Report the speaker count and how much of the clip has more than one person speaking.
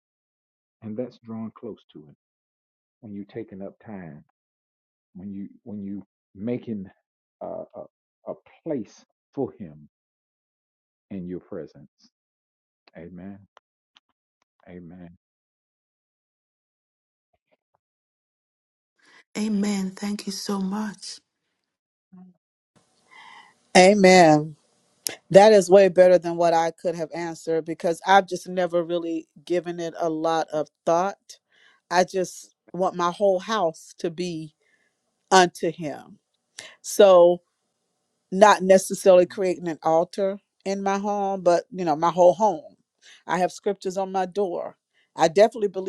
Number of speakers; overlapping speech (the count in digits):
3, about 1%